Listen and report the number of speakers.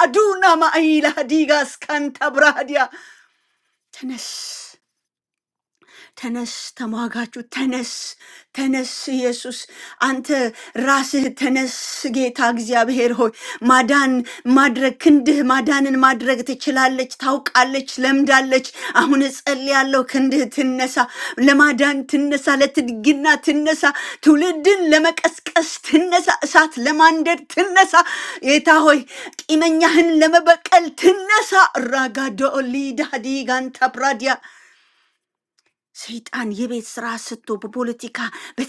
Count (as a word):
one